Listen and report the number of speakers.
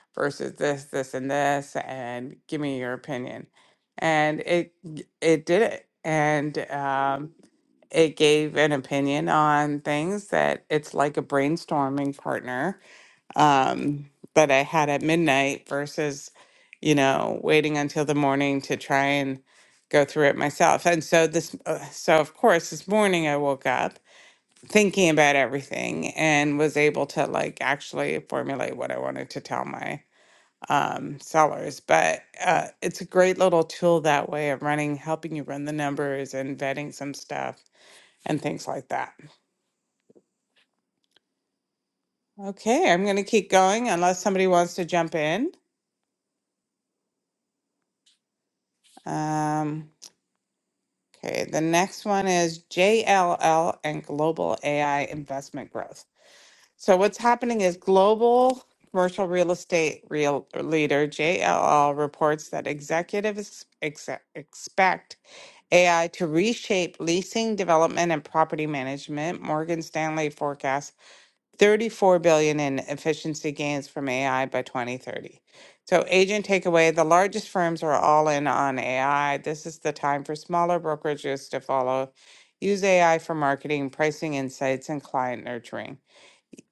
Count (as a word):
one